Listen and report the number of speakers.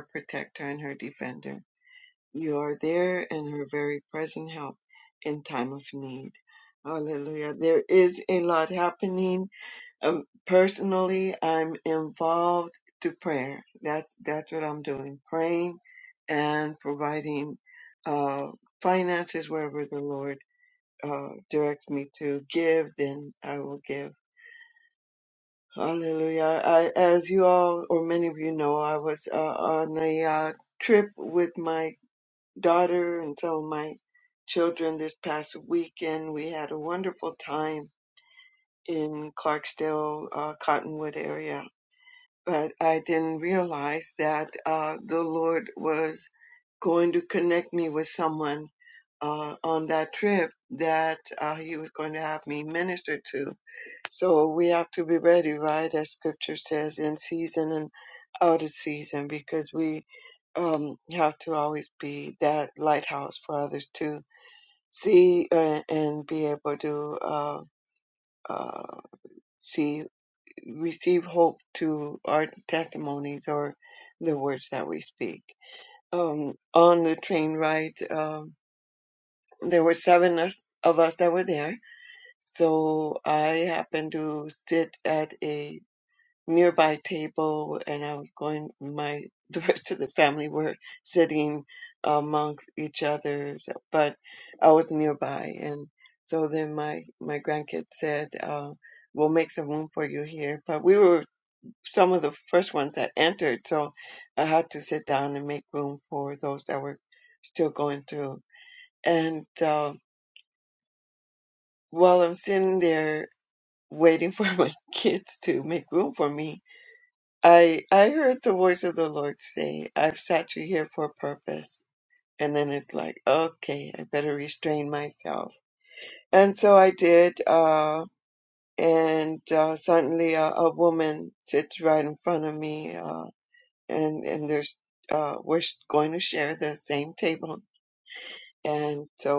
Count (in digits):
1